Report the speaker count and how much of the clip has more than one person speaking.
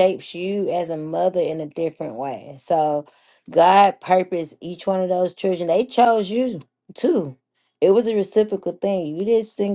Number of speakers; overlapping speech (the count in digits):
1, no overlap